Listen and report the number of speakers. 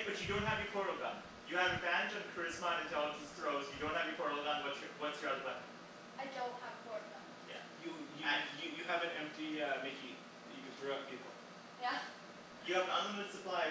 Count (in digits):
3